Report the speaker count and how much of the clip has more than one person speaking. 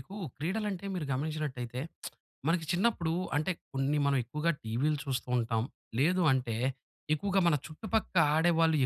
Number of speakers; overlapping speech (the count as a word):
one, no overlap